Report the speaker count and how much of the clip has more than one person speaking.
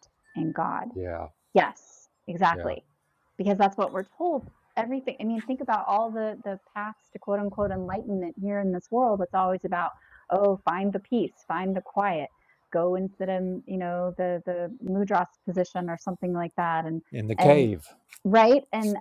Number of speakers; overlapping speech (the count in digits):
2, about 3%